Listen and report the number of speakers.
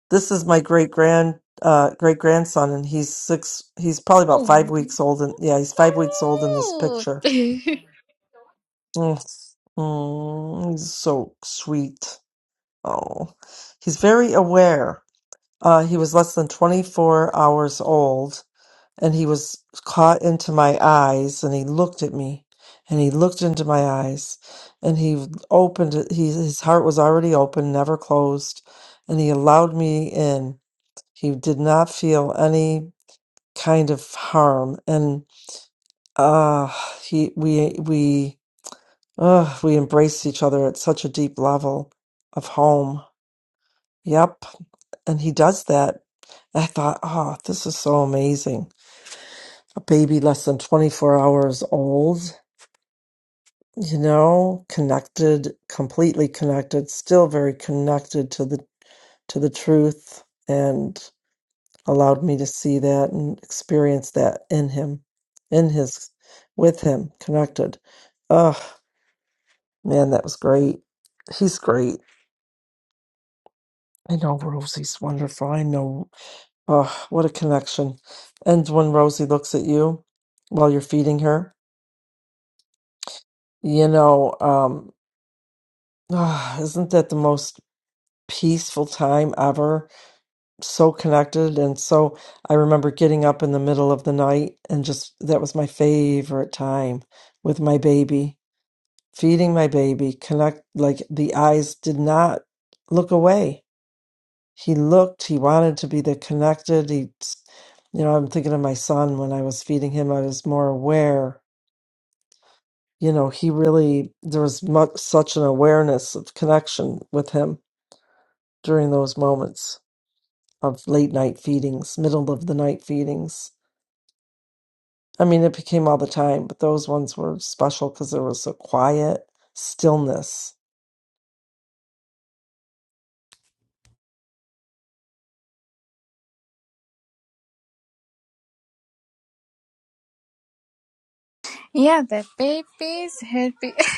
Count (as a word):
two